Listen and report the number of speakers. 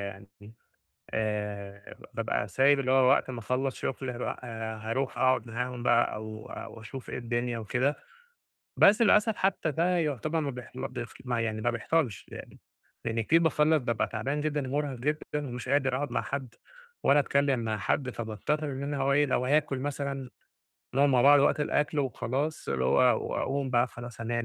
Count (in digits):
1